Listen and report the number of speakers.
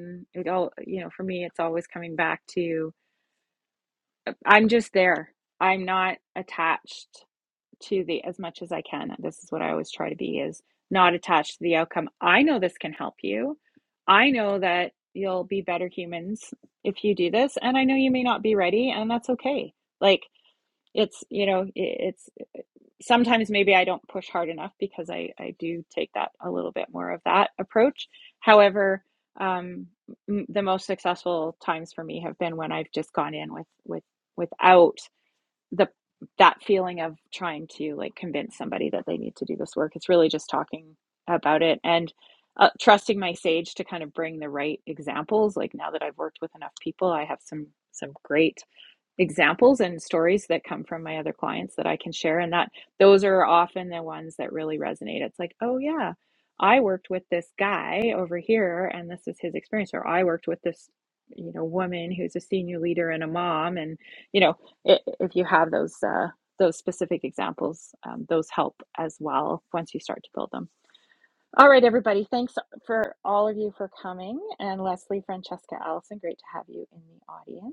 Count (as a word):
one